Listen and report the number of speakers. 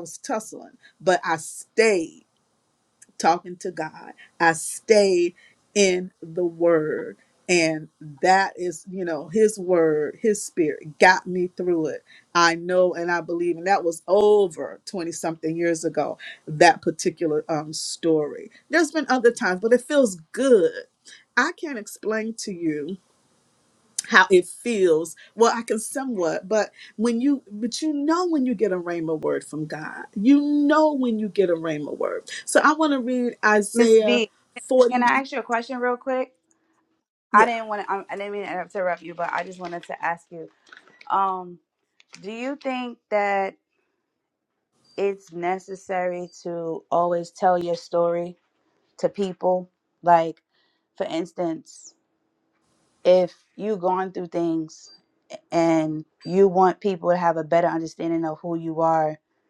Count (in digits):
2